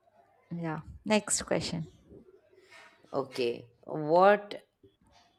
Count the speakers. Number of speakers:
2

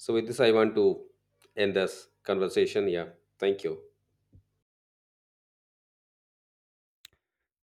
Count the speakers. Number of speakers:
1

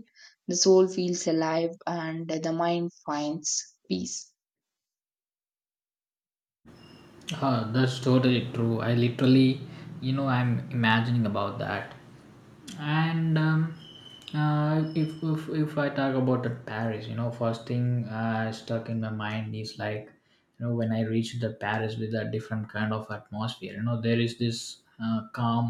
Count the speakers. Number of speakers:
2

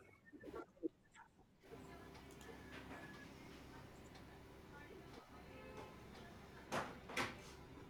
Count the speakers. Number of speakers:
0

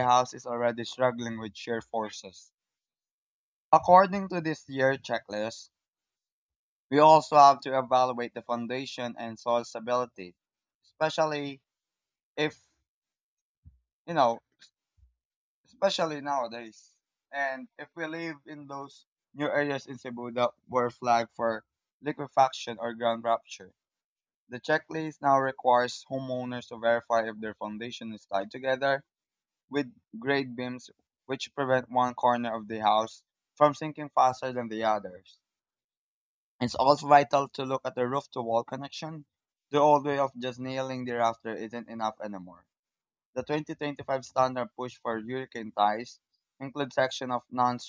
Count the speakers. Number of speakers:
1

